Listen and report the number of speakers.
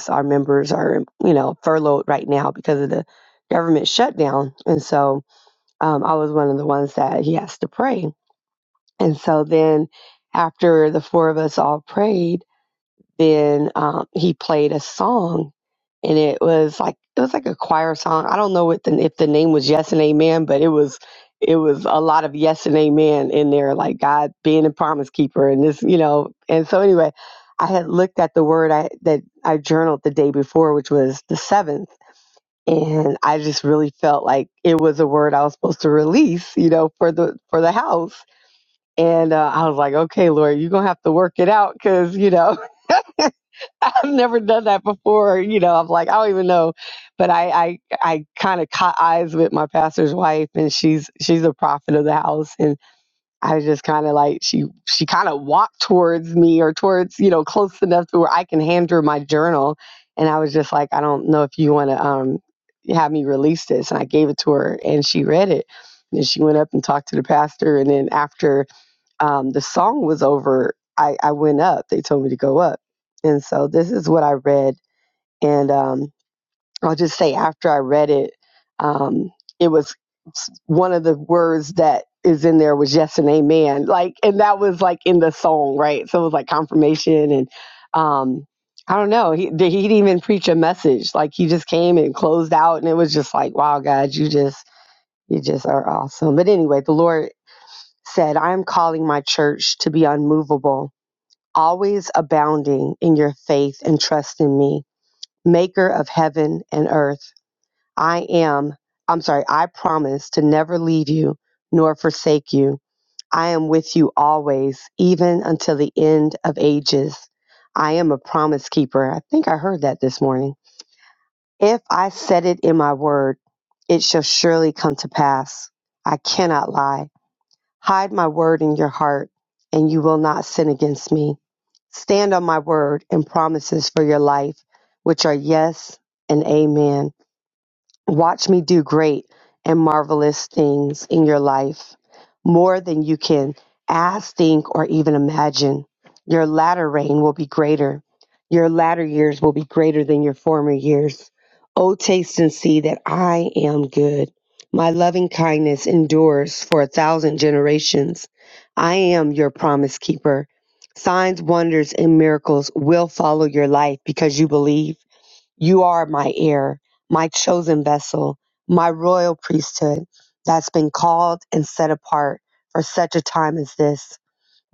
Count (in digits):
1